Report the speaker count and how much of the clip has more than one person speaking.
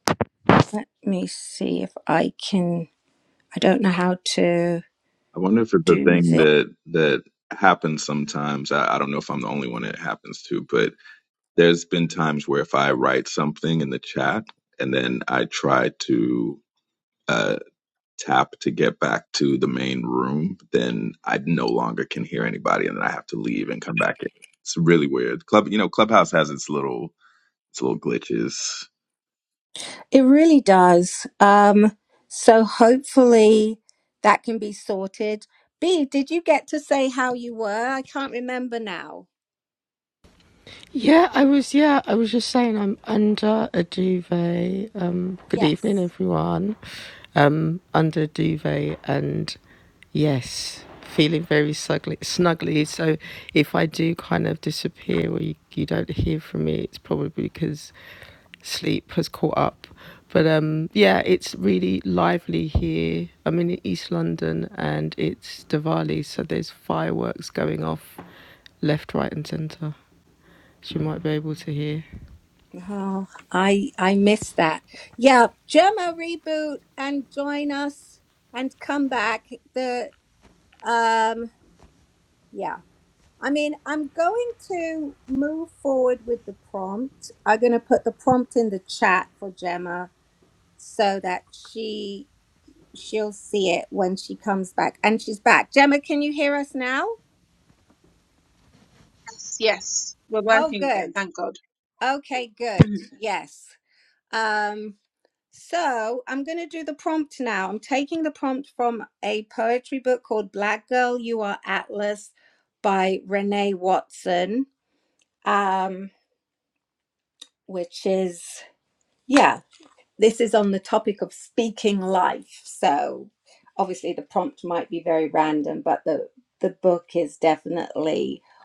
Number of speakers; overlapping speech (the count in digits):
4, about 1%